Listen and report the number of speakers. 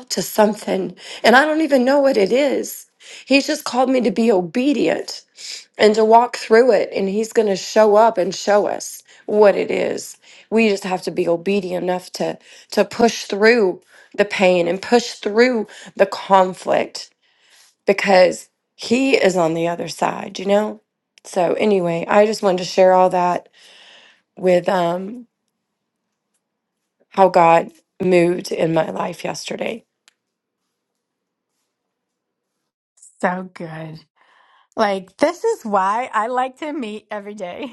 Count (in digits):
2